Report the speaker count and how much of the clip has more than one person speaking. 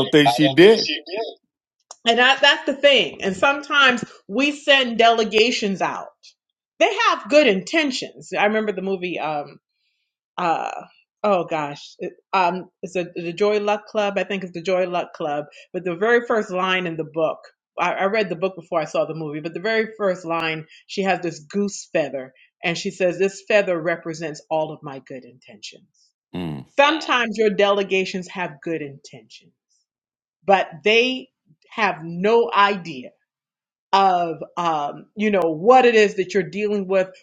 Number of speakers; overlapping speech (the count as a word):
two, no overlap